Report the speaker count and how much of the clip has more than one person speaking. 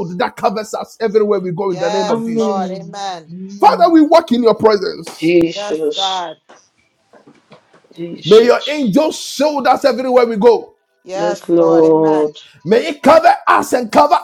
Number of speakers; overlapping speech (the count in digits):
3, about 24%